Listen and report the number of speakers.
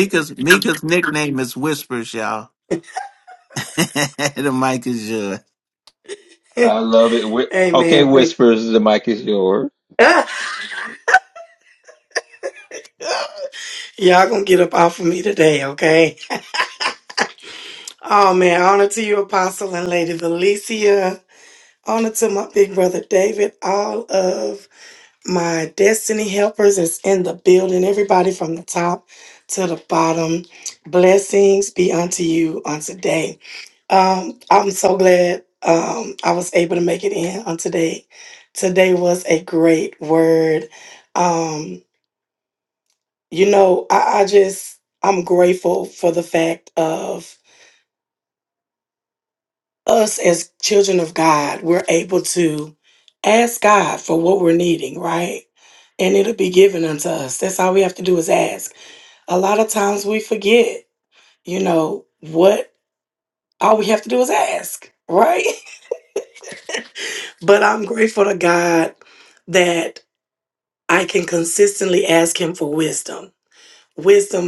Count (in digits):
3